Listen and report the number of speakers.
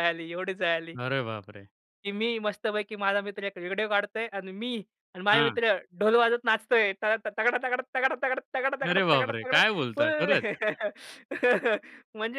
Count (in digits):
2